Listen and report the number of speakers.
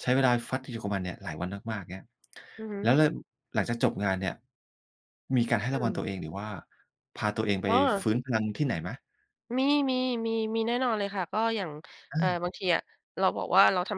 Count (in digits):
2